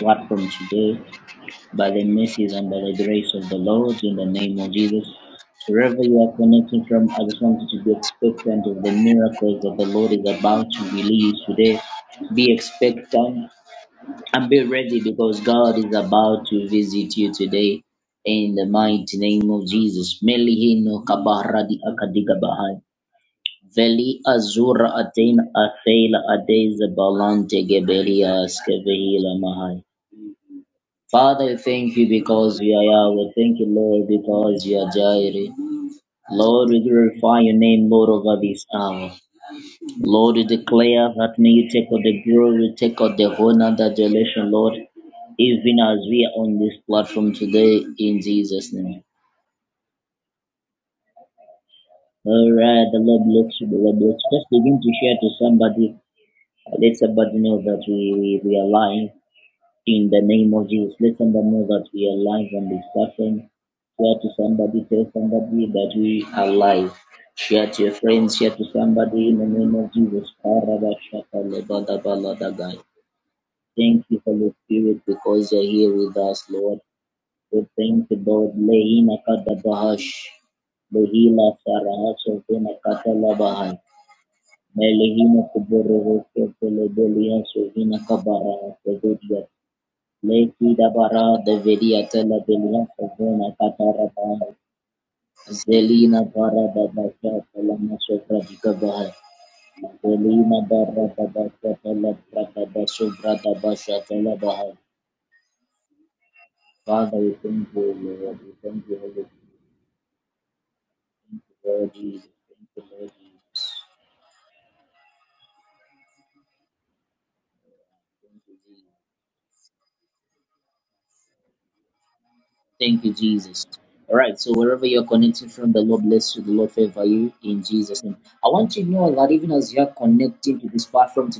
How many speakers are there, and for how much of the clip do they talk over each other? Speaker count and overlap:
1, no overlap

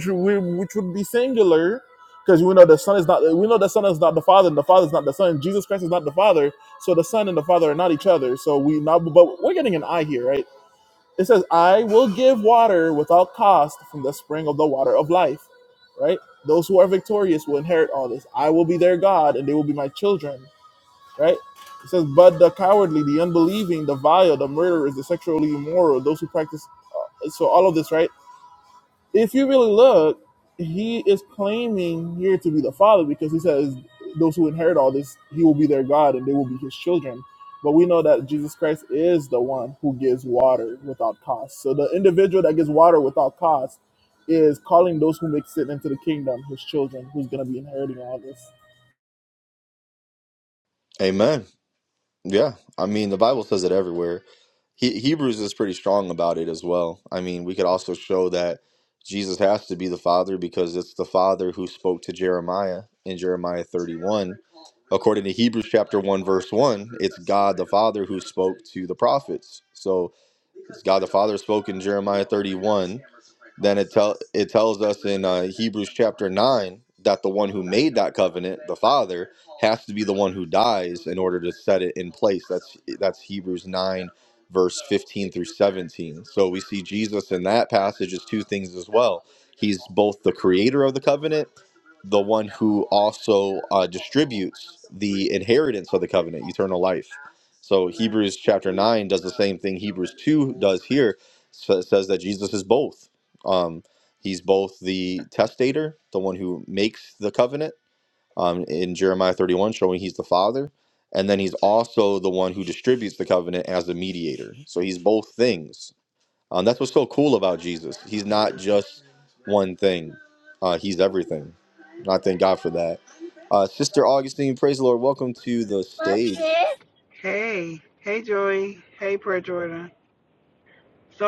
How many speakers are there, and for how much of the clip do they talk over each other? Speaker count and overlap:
3, no overlap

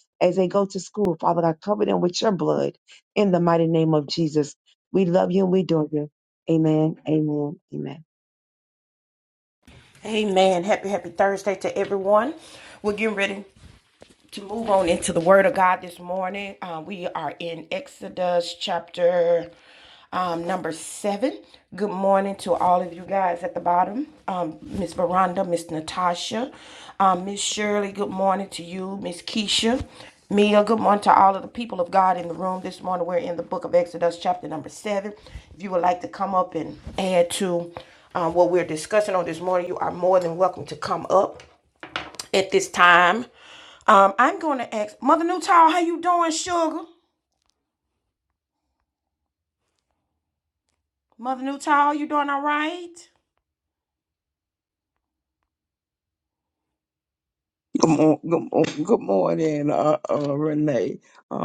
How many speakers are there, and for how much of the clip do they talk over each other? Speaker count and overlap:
3, no overlap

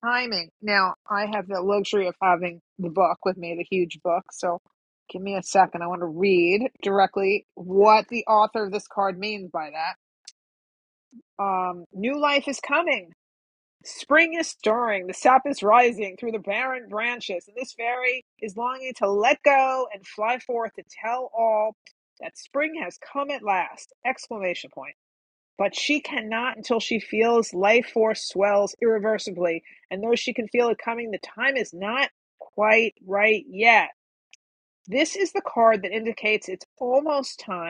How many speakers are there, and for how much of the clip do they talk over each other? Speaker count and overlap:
1, no overlap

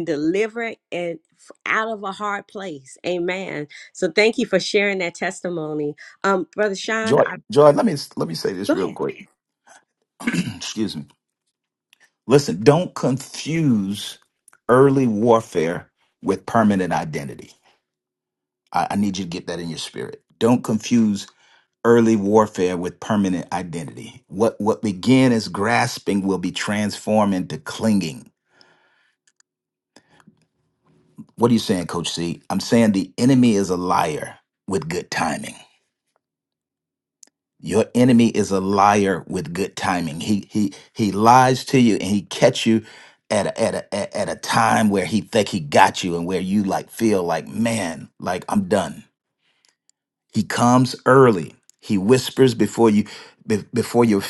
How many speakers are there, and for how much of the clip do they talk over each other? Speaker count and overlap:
2, about 1%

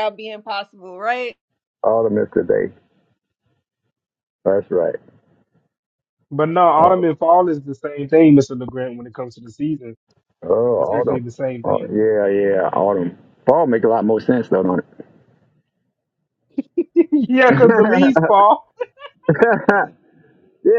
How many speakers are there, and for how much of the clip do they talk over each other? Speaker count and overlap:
3, about 5%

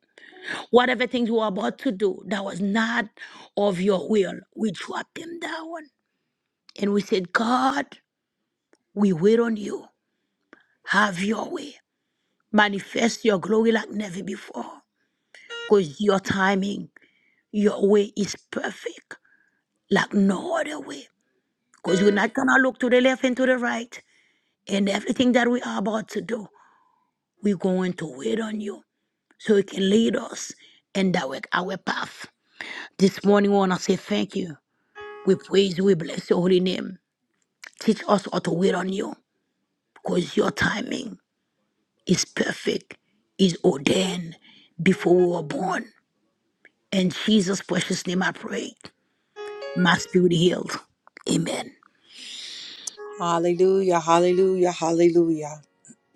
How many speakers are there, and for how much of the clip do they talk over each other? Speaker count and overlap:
2, no overlap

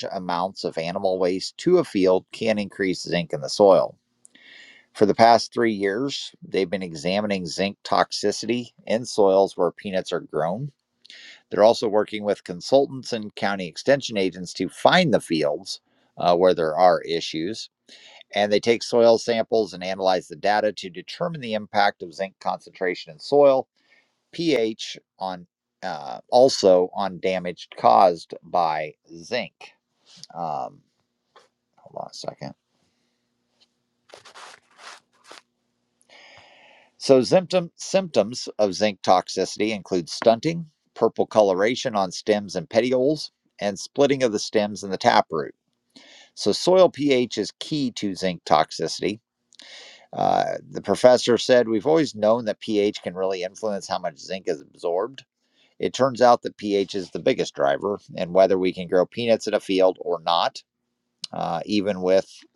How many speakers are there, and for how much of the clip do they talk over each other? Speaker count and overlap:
1, no overlap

